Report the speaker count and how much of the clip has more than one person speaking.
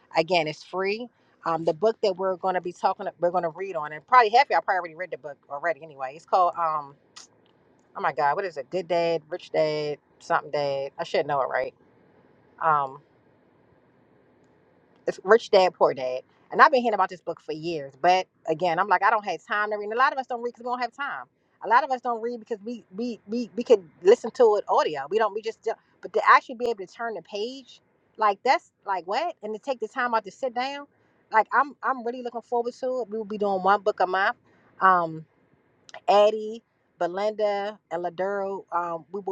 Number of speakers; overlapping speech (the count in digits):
1, no overlap